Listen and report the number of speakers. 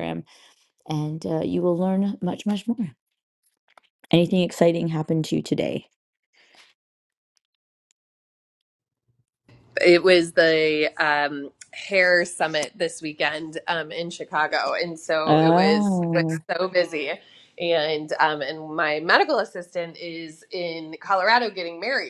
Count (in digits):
2